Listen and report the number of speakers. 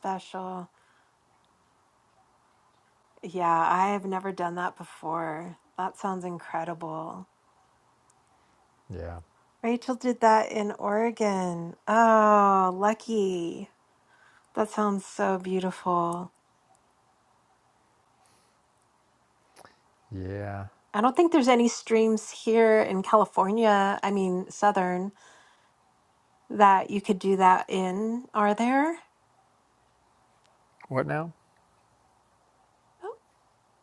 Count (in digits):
2